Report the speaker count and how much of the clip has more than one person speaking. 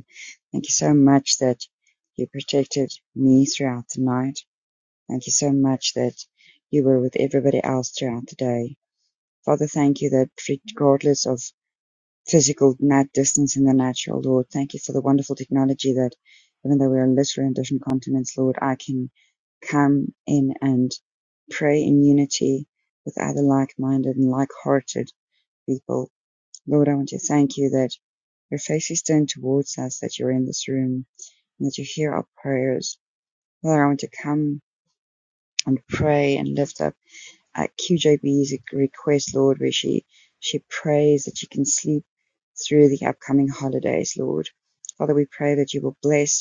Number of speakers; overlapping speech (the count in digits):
1, no overlap